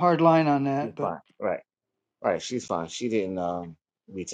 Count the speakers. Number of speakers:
2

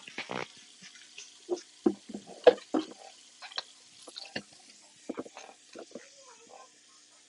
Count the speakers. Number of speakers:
0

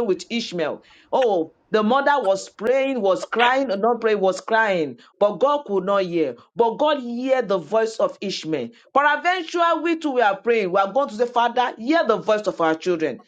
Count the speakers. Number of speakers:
1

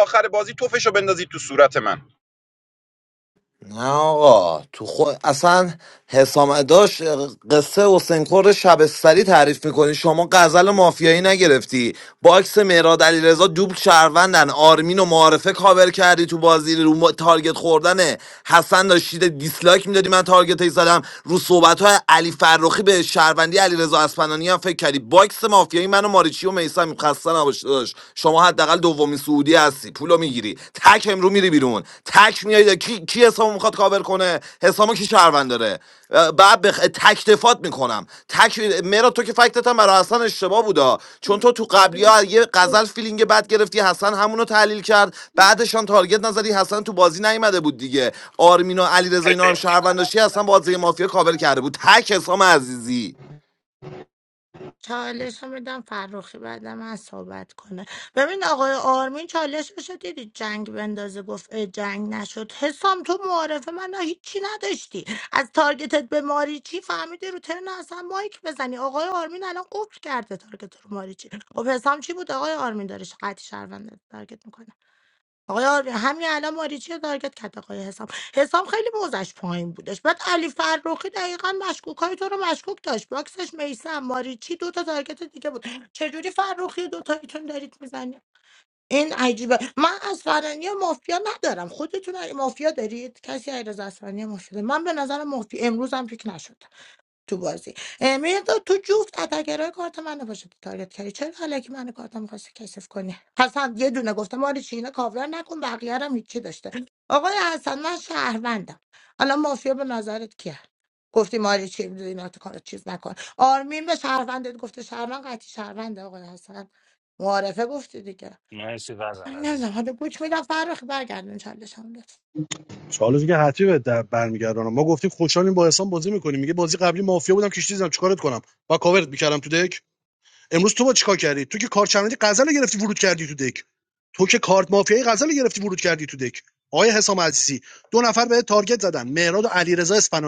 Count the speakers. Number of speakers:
5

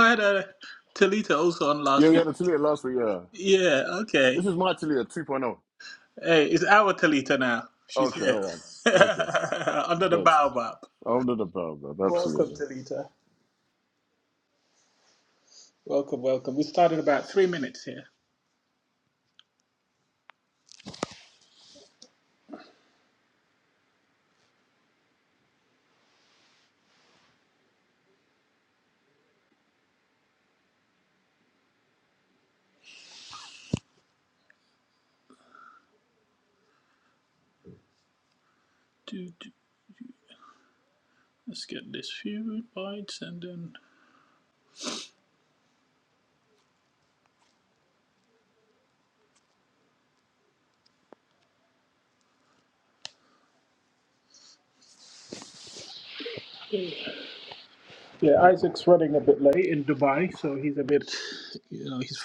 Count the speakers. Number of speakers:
2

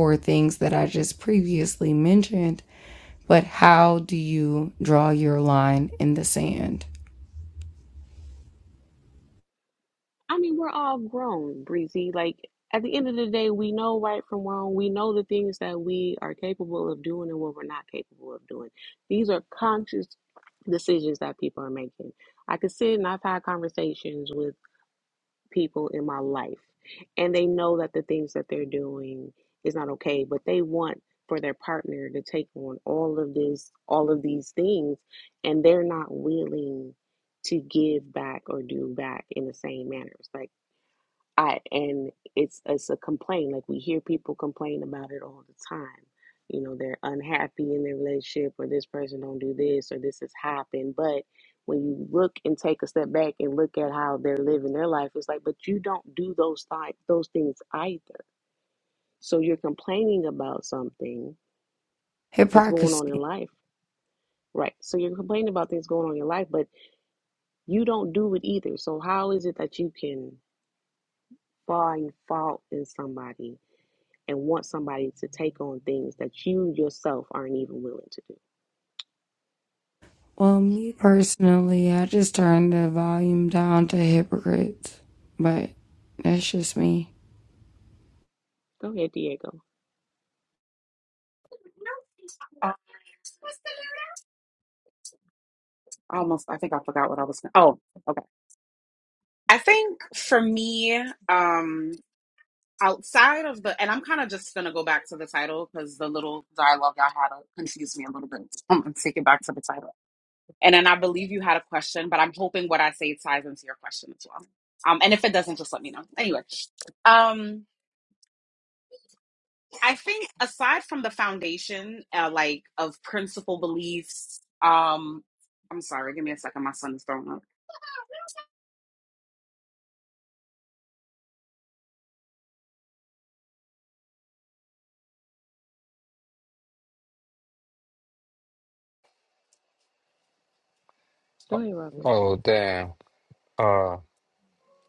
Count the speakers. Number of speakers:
4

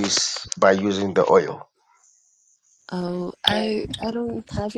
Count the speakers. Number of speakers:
2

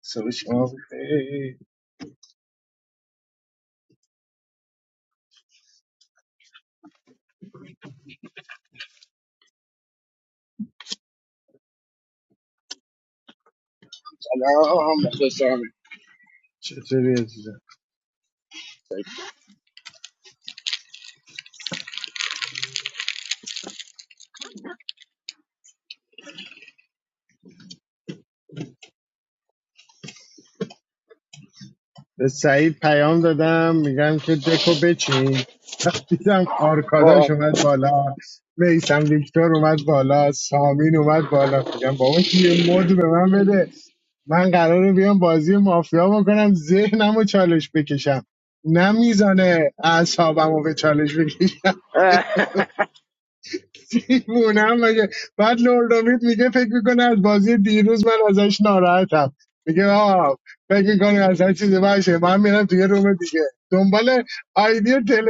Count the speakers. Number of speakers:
2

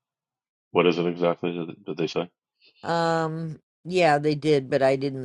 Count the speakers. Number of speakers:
2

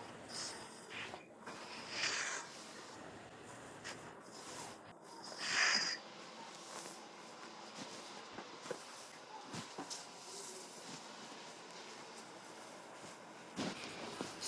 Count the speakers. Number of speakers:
0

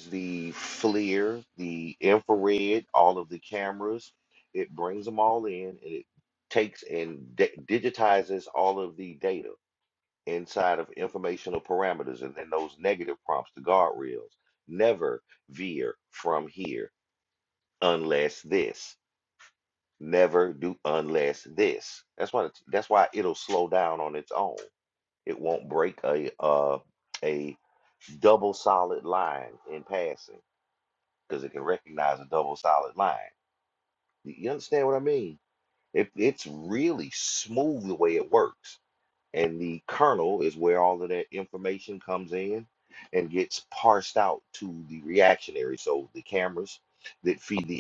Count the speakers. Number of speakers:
1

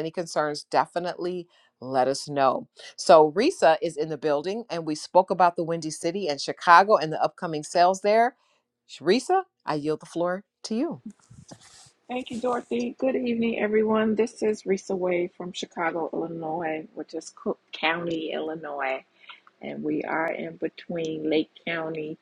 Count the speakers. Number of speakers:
2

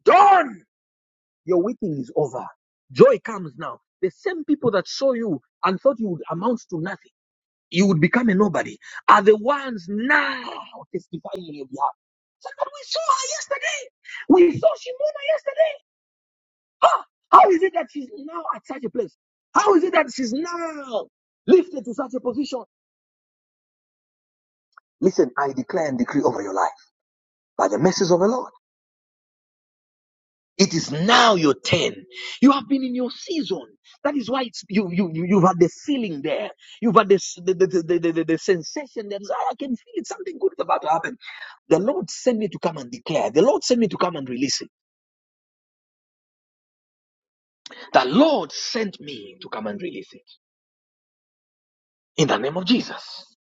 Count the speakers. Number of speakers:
1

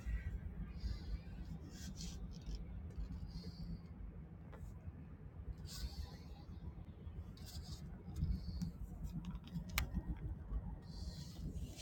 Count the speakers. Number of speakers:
0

